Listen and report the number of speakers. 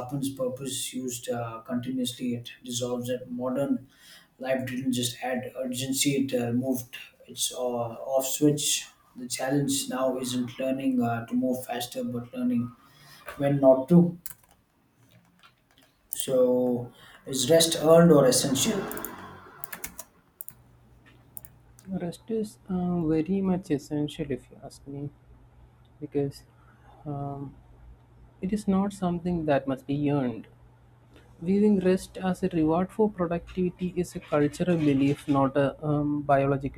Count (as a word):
two